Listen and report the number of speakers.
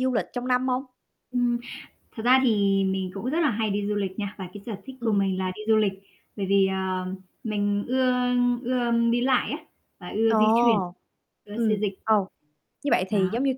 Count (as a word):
two